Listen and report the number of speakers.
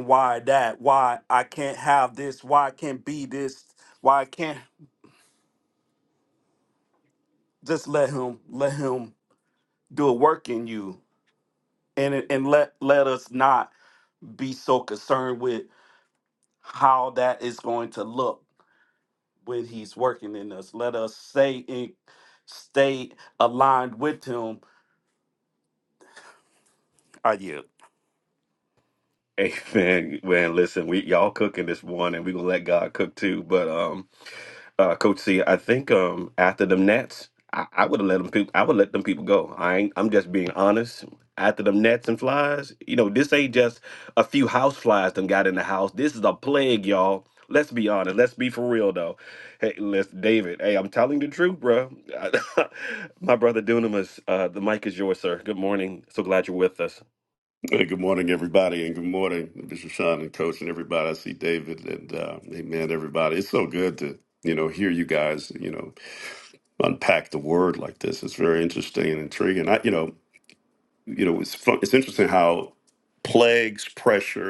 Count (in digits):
3